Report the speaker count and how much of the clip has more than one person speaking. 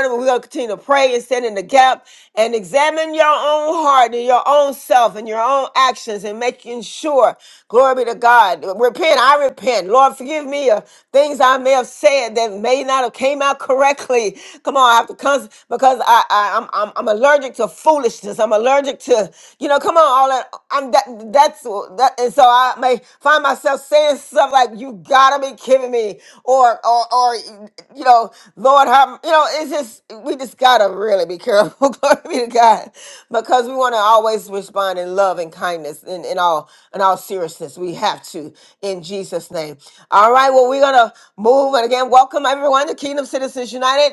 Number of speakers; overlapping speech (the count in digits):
1, no overlap